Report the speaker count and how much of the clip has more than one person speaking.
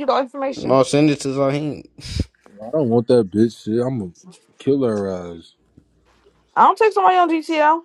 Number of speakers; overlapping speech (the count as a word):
three, about 3%